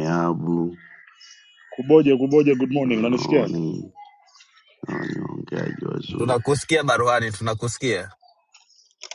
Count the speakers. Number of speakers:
3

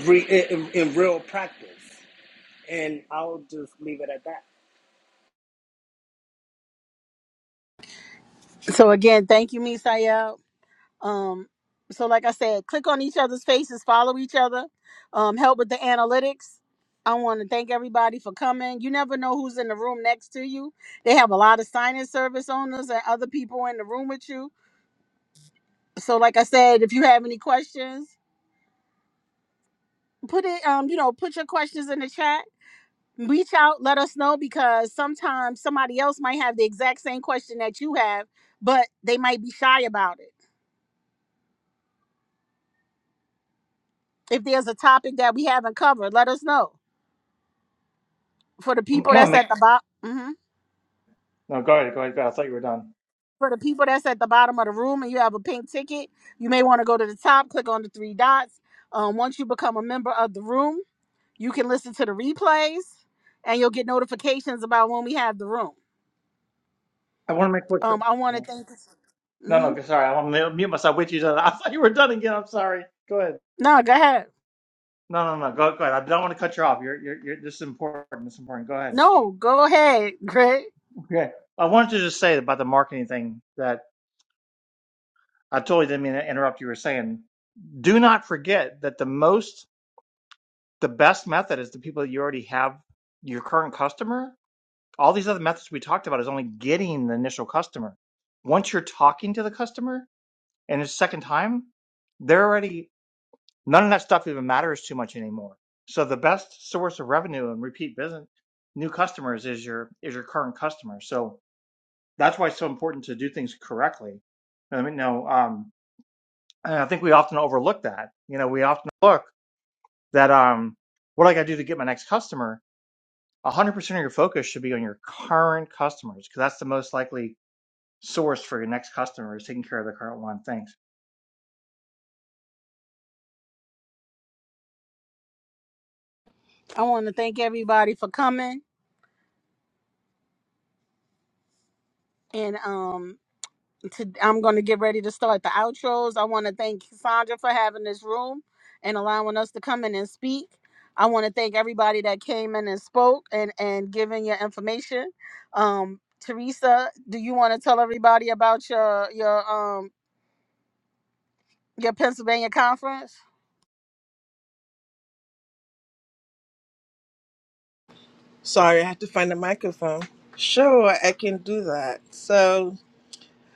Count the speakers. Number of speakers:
4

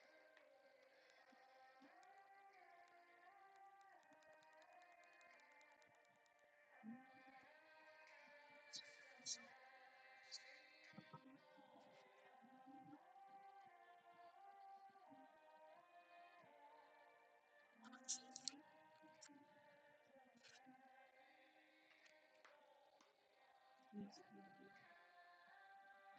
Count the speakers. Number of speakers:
0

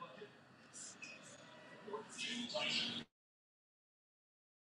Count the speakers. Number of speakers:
0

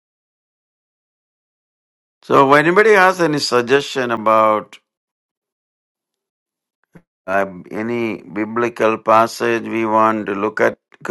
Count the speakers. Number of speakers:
1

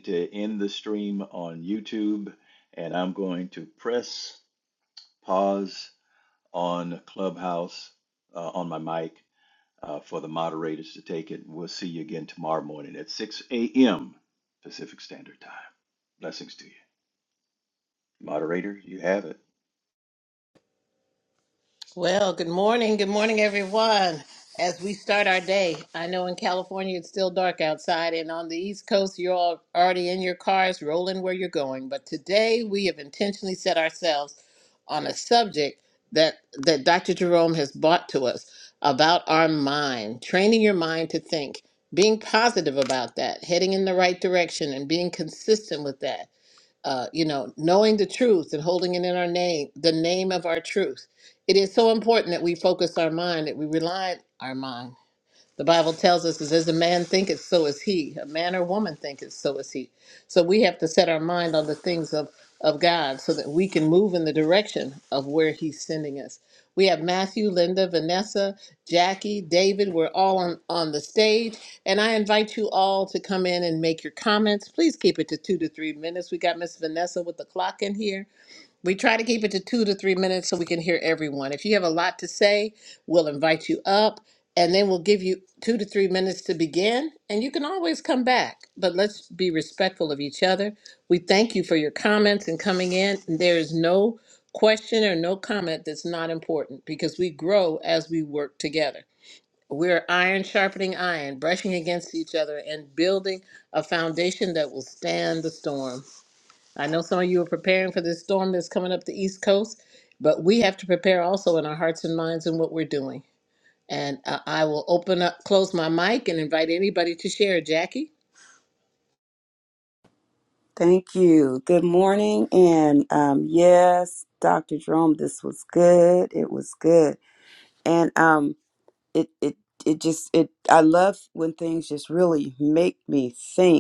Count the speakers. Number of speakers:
3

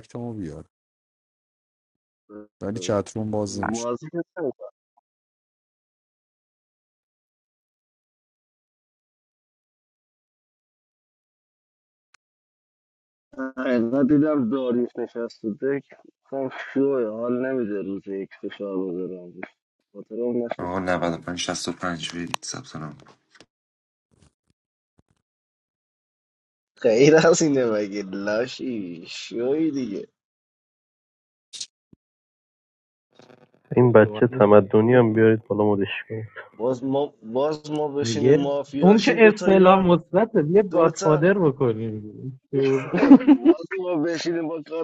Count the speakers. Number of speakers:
5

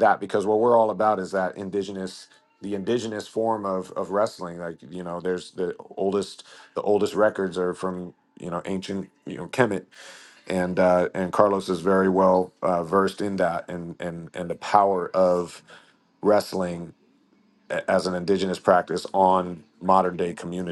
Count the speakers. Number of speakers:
1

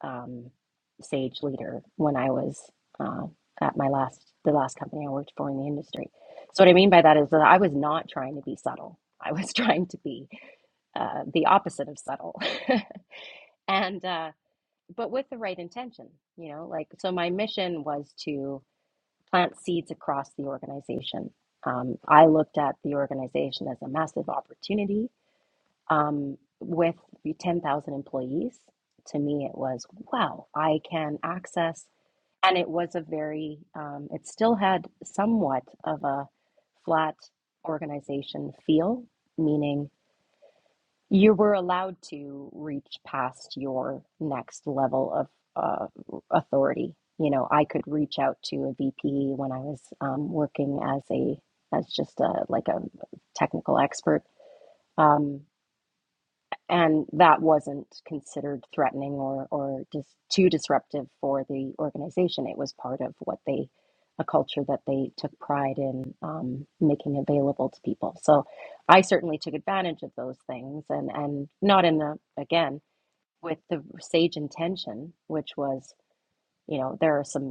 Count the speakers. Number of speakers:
1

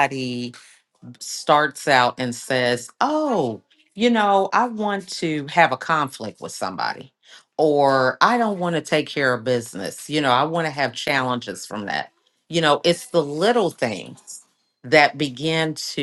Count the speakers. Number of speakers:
1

